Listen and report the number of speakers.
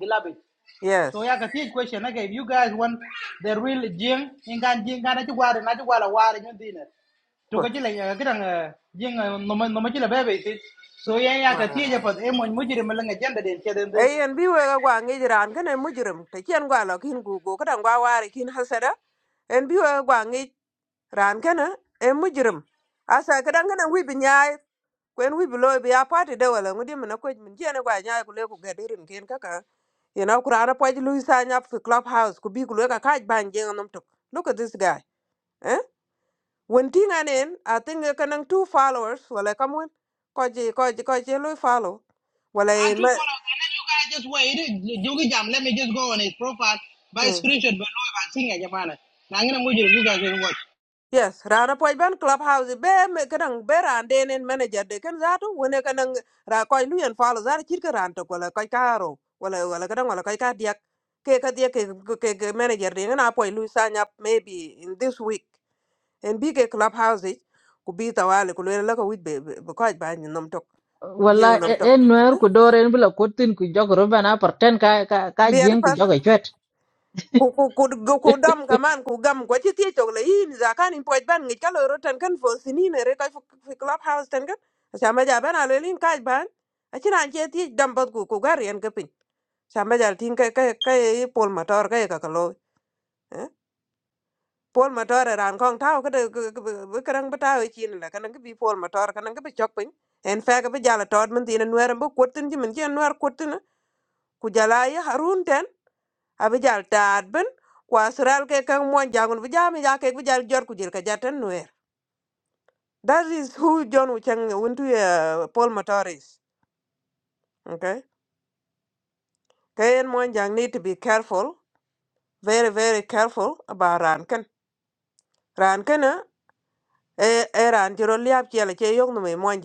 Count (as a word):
three